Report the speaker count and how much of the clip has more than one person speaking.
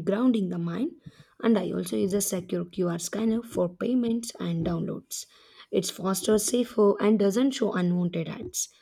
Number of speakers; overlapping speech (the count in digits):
1, no overlap